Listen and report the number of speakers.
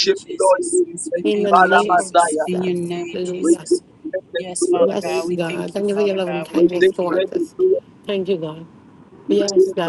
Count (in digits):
3